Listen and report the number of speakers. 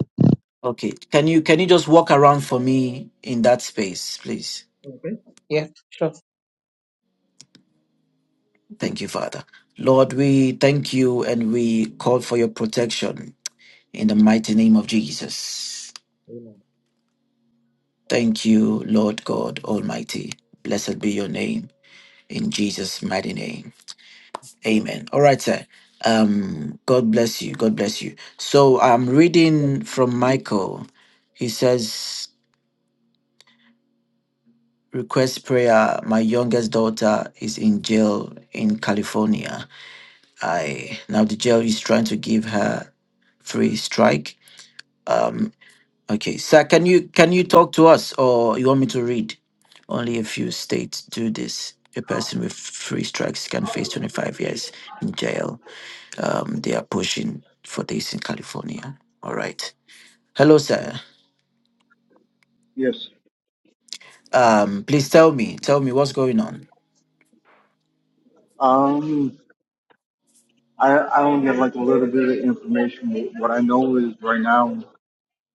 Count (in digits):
3